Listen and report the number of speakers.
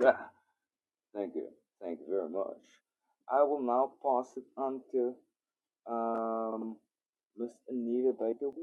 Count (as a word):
one